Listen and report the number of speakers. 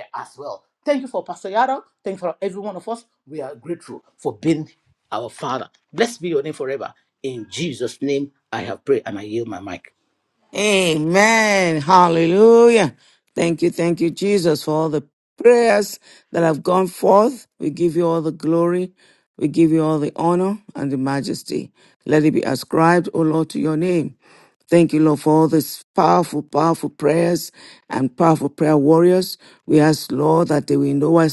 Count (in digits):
2